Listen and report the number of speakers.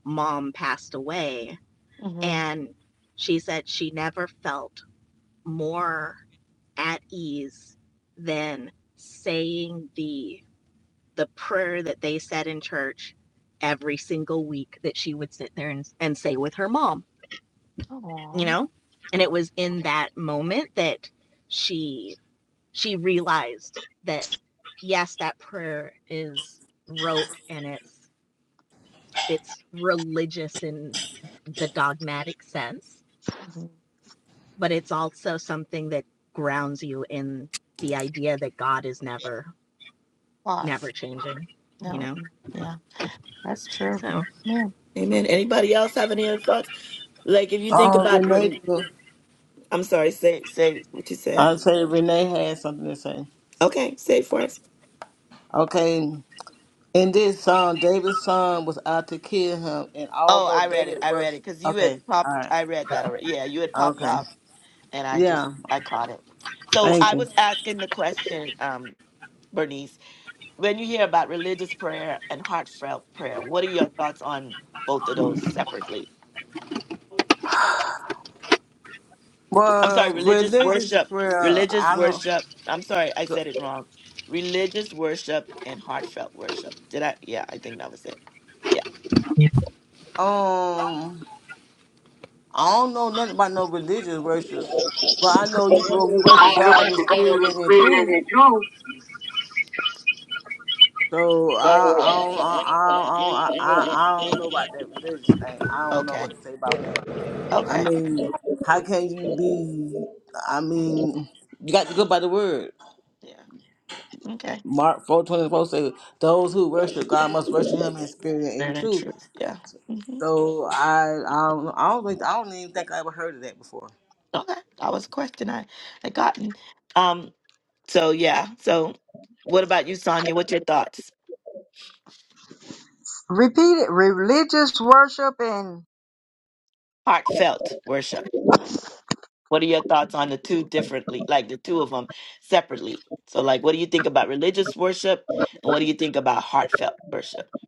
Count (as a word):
four